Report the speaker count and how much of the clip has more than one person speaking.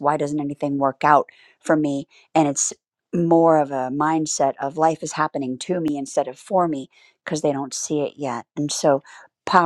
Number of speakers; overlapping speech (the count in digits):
1, no overlap